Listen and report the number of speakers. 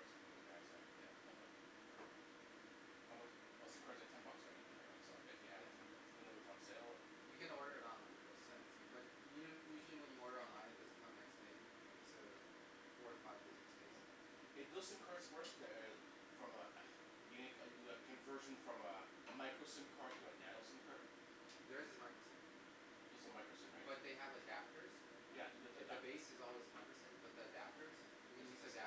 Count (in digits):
2